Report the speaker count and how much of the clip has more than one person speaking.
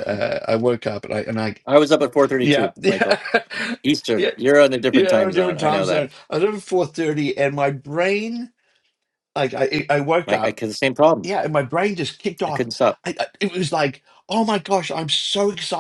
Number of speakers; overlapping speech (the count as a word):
two, about 16%